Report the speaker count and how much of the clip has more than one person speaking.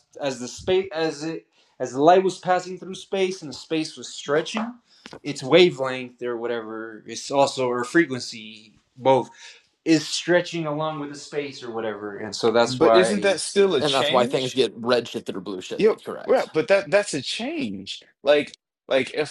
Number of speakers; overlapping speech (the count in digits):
3, about 11%